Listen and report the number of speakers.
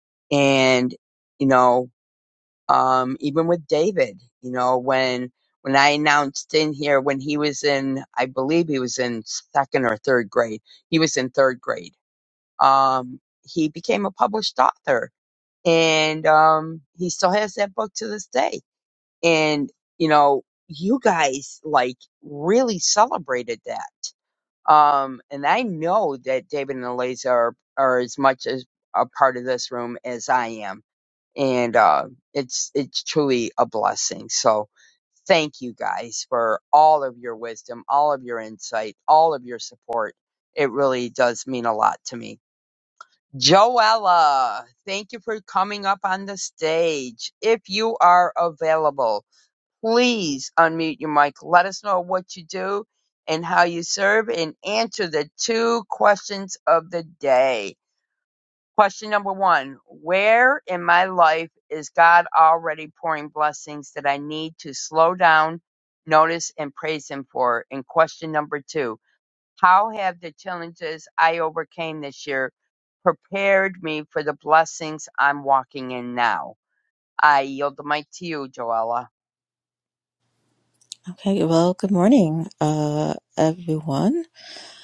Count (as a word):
two